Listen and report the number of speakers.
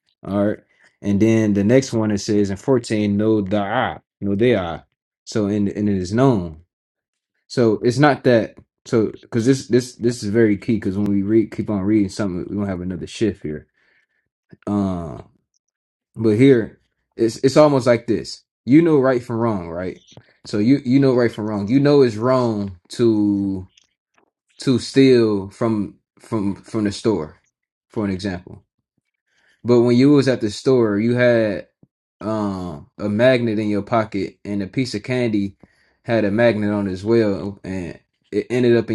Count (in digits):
1